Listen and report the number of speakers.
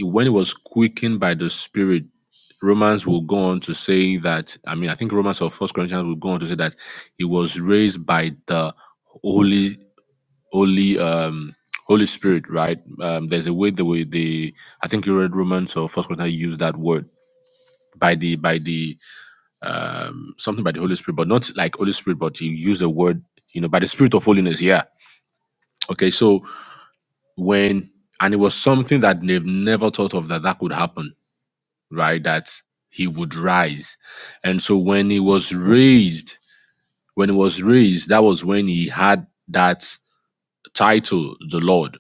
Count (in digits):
1